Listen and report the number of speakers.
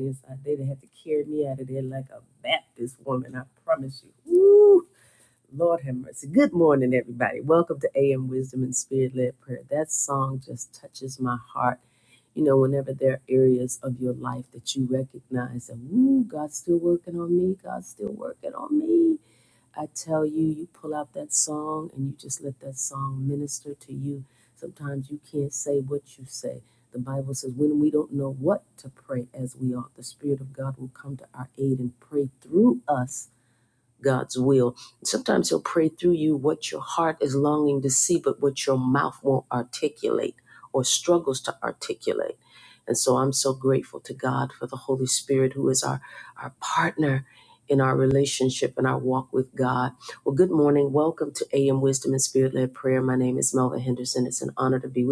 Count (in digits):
1